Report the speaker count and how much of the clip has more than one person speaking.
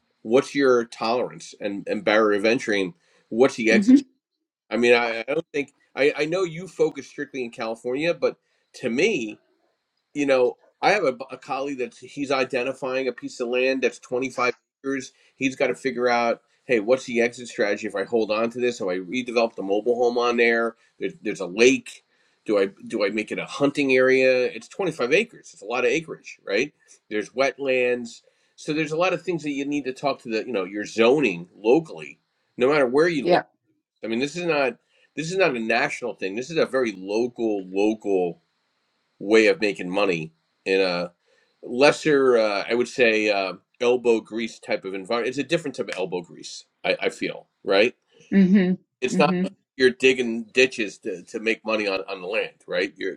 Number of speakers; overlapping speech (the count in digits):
2, about 1%